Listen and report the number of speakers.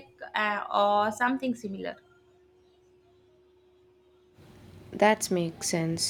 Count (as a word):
two